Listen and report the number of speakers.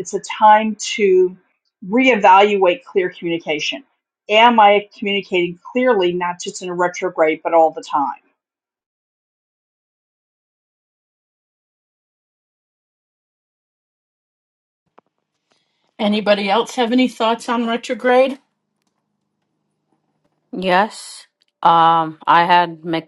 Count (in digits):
3